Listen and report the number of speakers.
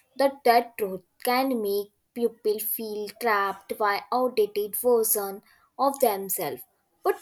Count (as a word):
one